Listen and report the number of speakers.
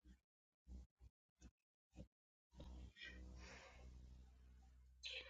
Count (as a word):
zero